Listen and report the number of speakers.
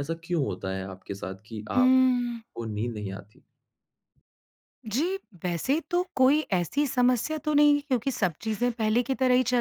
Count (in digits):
2